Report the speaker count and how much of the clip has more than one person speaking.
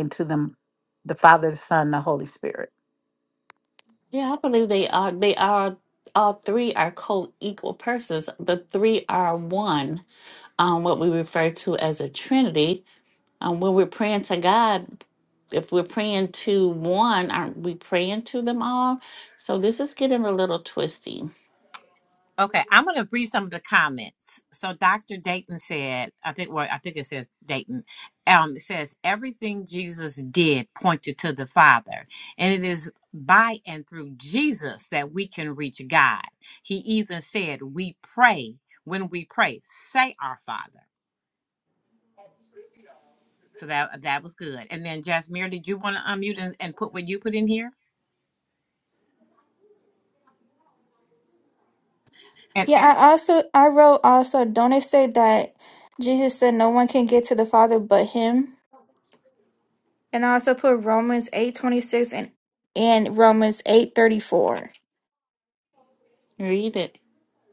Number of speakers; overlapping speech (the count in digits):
4, no overlap